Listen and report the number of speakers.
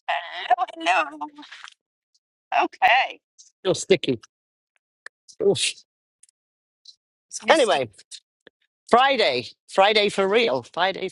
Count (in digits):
2